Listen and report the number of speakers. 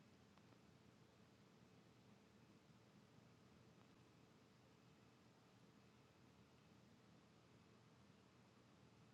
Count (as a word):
zero